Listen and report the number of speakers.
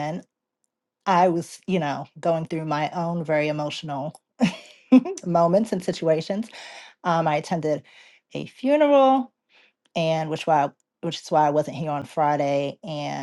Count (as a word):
one